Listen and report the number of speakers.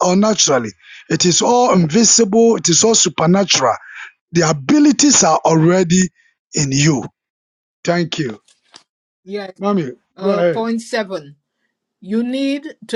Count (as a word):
two